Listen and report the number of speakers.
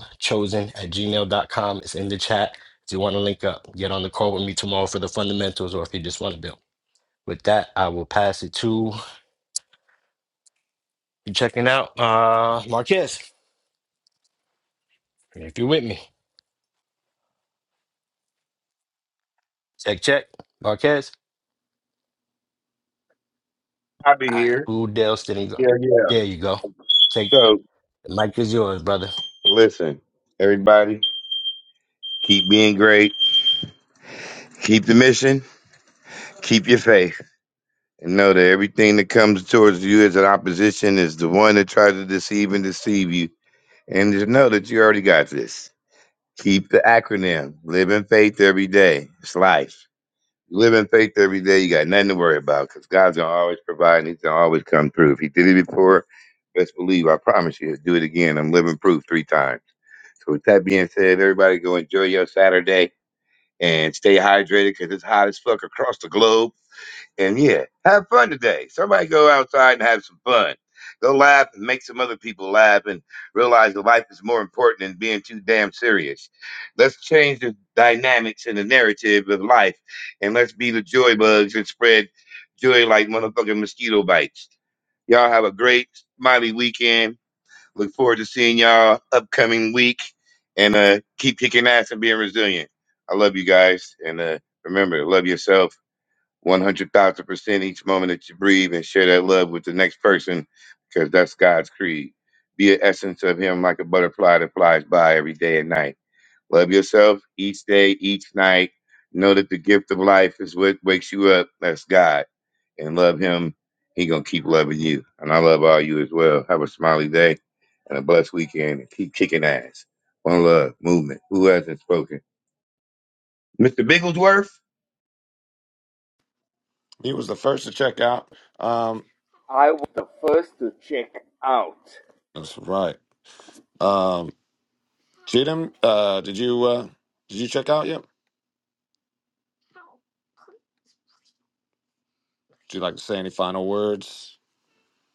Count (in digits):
4